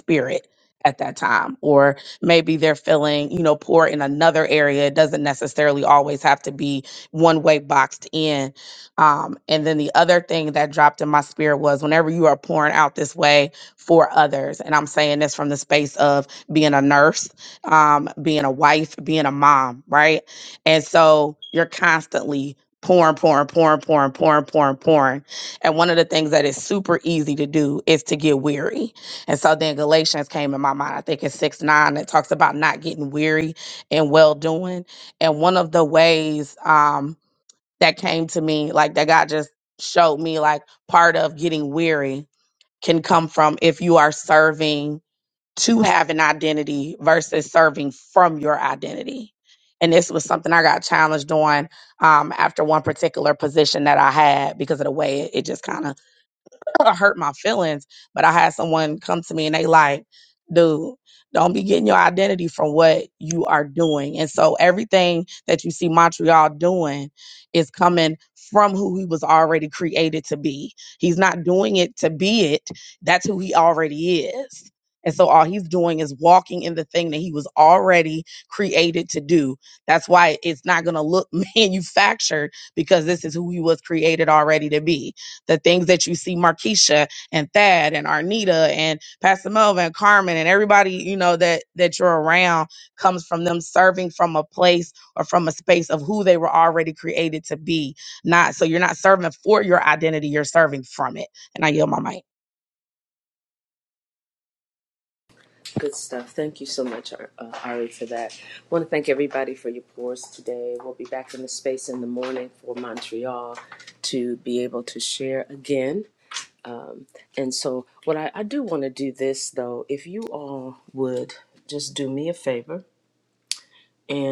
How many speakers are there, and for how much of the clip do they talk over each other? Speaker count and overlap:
two, no overlap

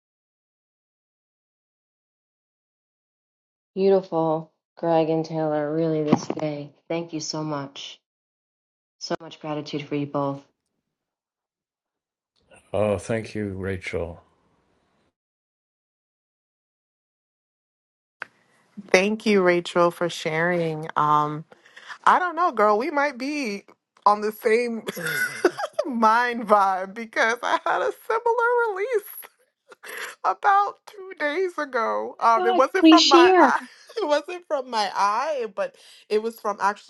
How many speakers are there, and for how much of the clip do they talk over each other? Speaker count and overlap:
three, about 3%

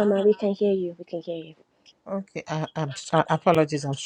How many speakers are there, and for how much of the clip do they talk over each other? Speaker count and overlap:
two, no overlap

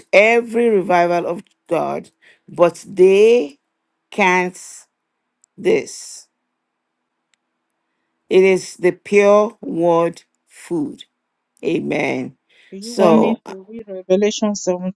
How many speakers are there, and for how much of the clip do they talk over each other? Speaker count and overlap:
two, about 3%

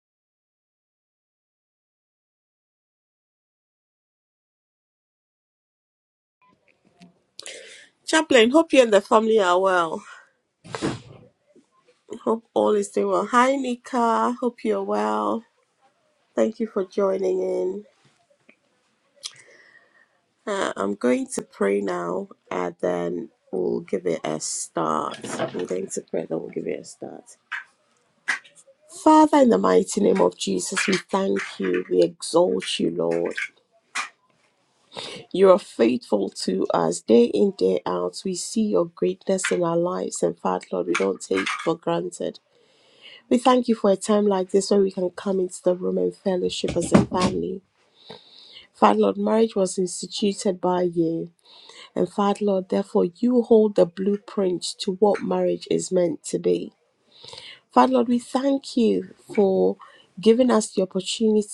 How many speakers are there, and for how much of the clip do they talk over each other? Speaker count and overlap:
one, no overlap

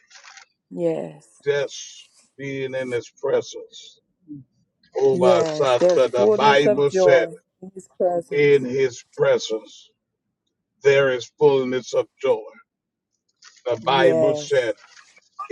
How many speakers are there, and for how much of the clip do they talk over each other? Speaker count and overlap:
two, about 19%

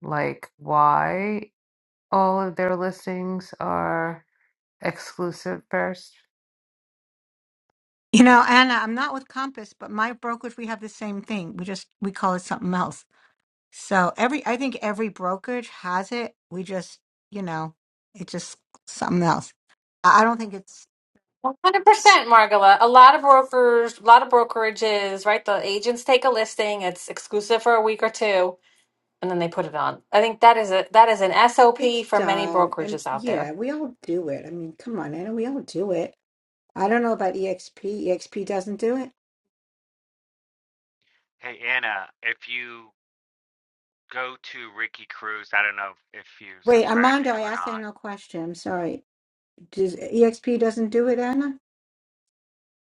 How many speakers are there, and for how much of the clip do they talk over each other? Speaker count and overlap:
four, about 5%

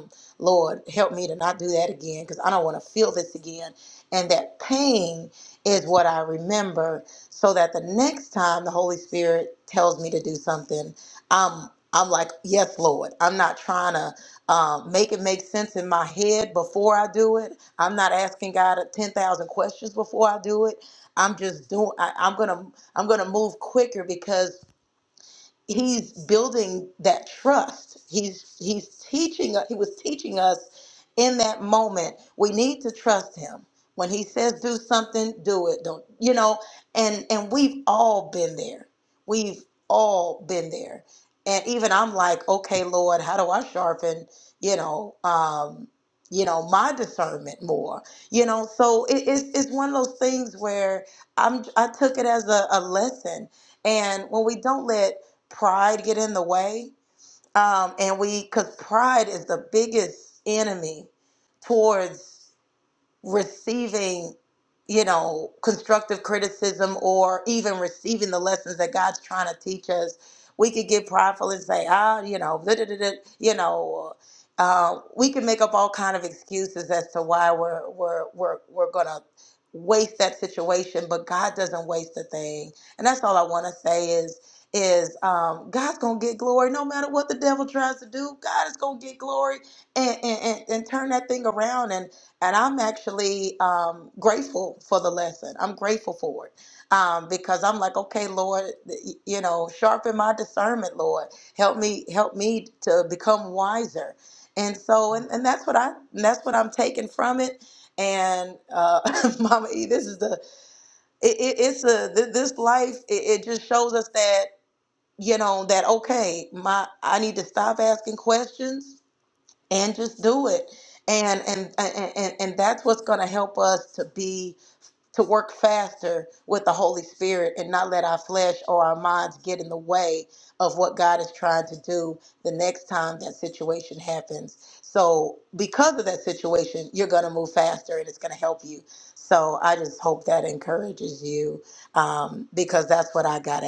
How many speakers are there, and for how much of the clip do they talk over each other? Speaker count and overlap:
one, no overlap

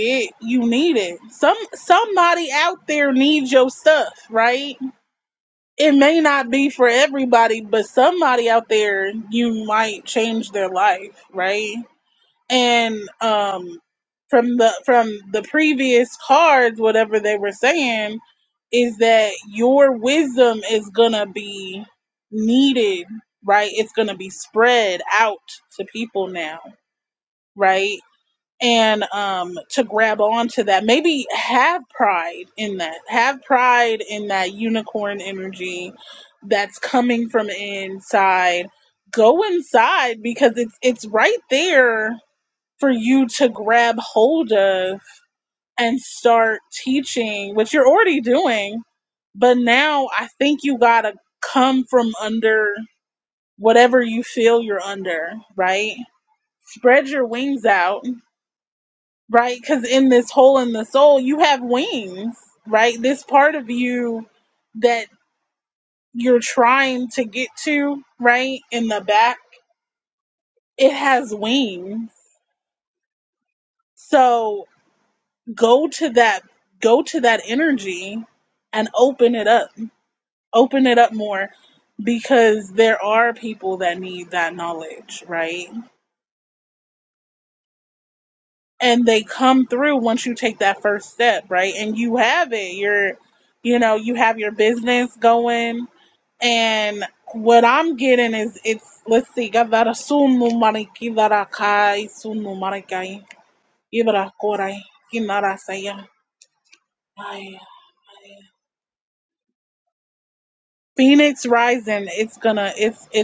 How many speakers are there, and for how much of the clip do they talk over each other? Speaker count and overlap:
one, no overlap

